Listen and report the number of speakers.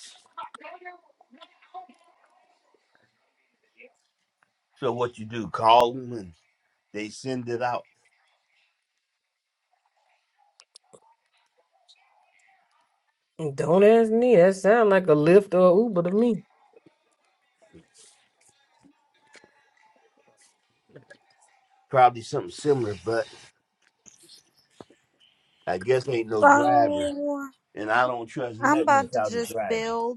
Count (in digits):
3